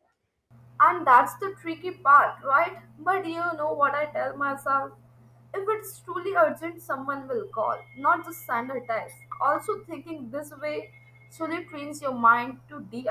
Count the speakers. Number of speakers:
1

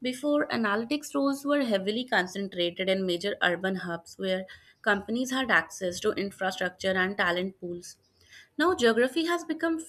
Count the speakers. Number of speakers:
1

